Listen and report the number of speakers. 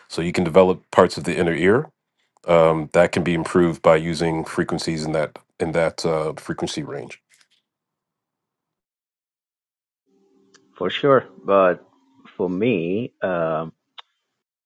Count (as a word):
two